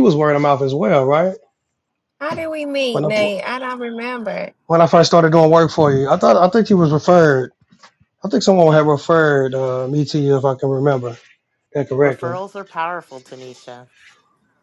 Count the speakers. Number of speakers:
three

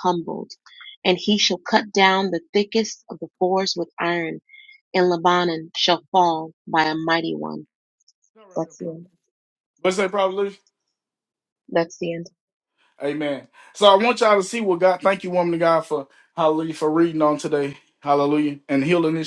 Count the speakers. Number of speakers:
two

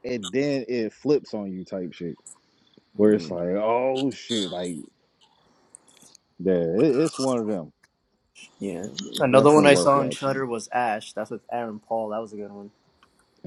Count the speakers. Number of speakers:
two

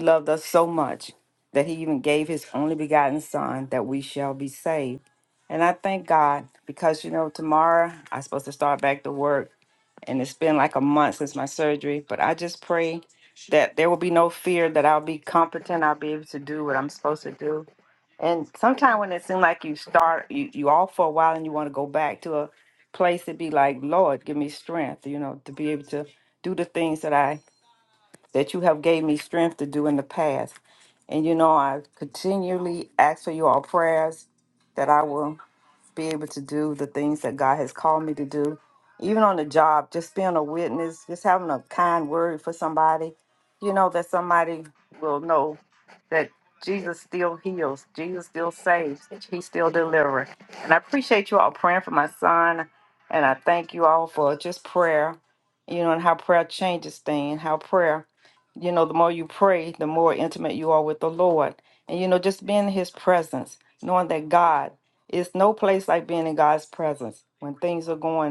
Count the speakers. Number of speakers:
one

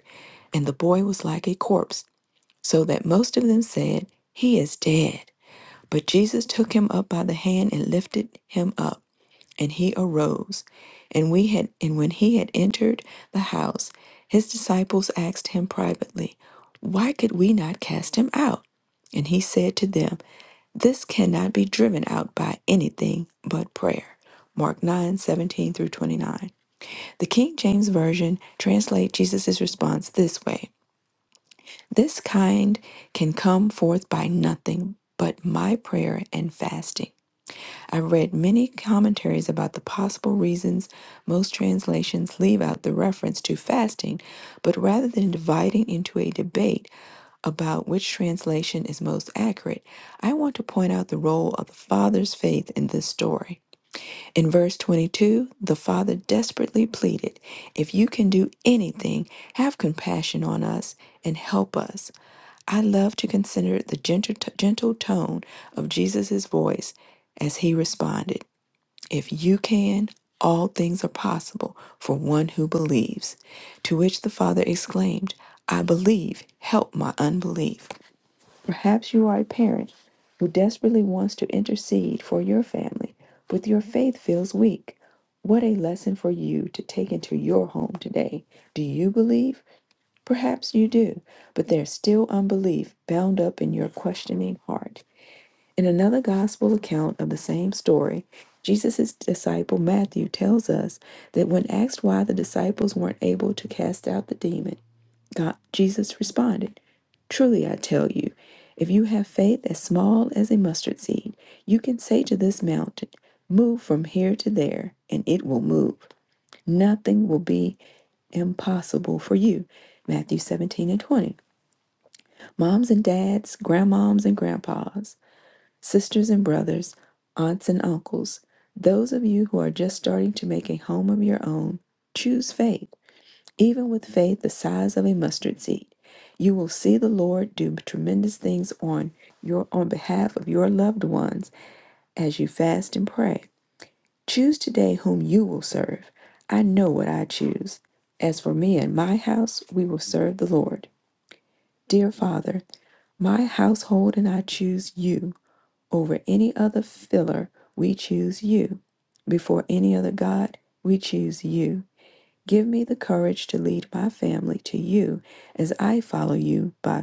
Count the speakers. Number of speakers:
one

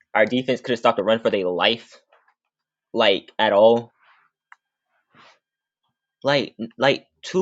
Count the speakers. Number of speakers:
one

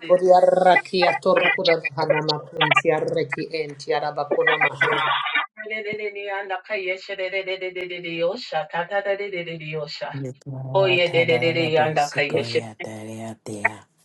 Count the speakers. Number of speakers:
three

